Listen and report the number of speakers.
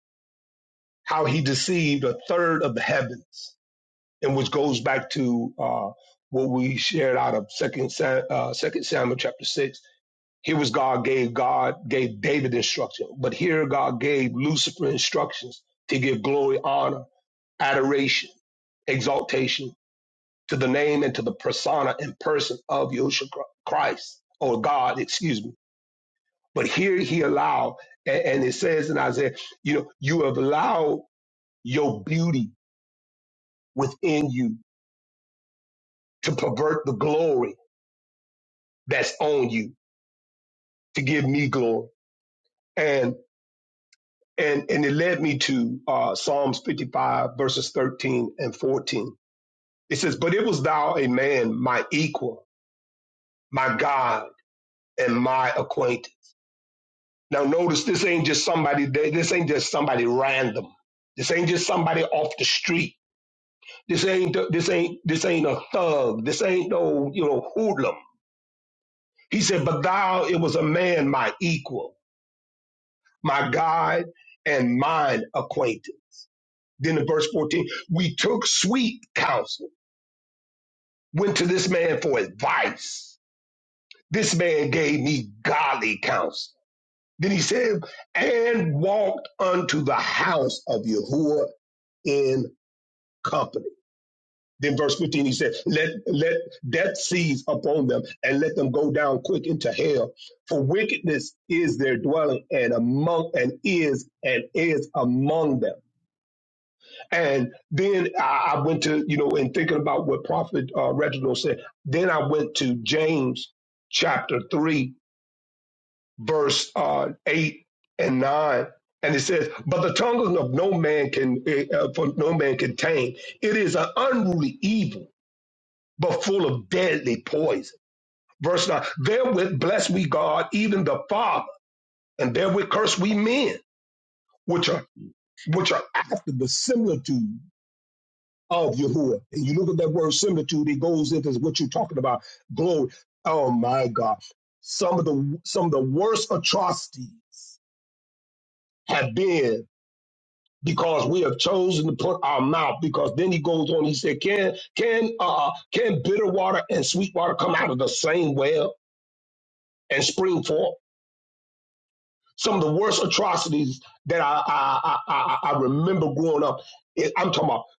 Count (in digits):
1